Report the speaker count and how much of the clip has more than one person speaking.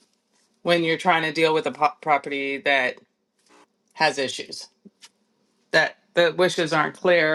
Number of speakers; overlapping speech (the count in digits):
1, no overlap